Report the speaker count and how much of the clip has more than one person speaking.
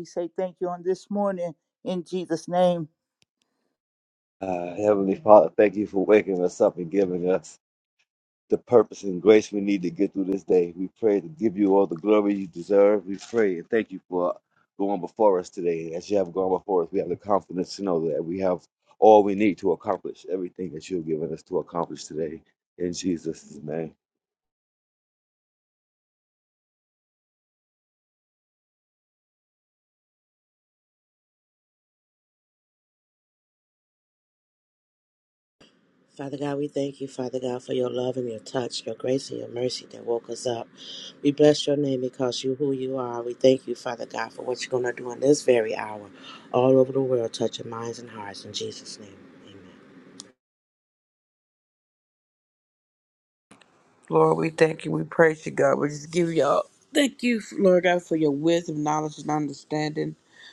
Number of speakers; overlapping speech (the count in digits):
4, no overlap